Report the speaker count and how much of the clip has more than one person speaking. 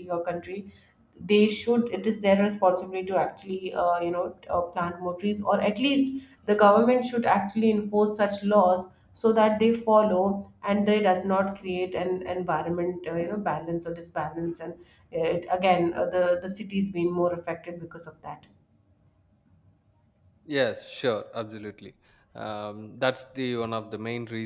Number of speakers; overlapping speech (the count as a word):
two, no overlap